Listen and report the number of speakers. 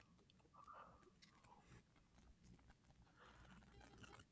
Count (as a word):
zero